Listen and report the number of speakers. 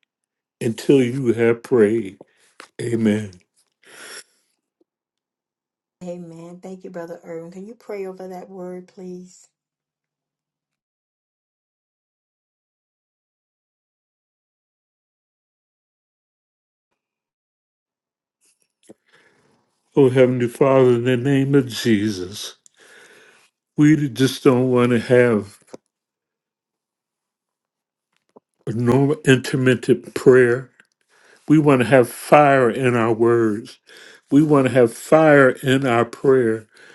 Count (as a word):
two